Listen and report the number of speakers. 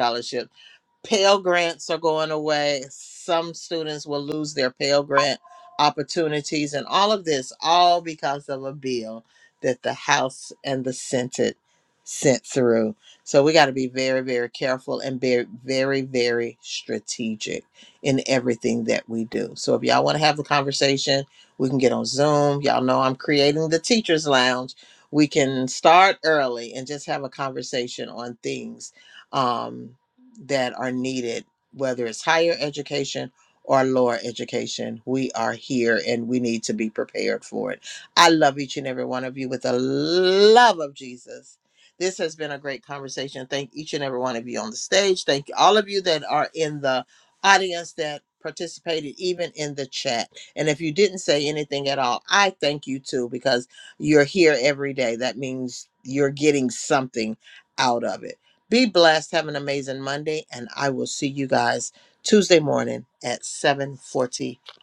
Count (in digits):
1